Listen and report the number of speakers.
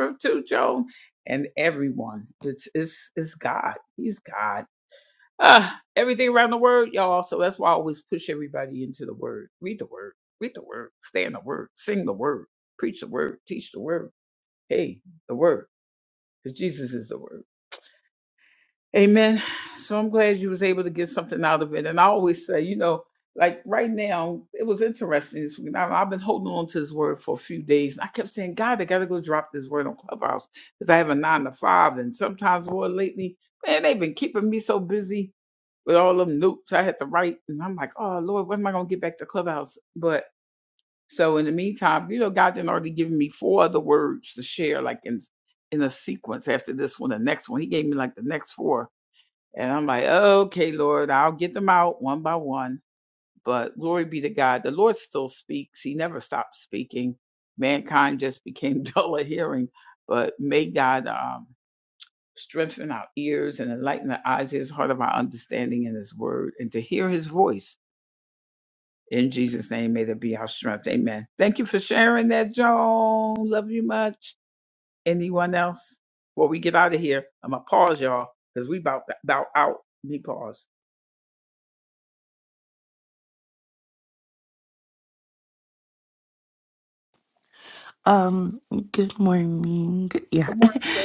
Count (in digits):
2